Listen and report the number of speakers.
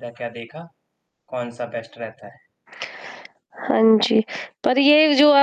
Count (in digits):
2